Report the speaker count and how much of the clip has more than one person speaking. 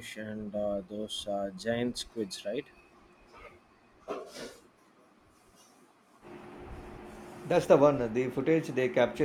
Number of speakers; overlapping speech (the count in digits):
2, no overlap